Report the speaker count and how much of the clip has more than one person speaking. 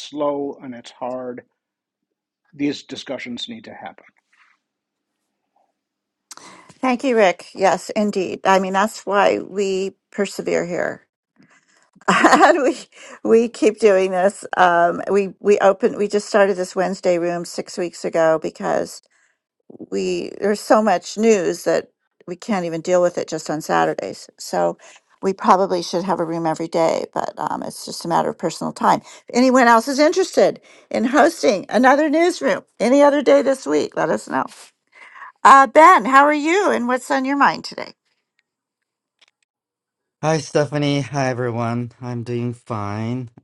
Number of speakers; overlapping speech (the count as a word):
three, no overlap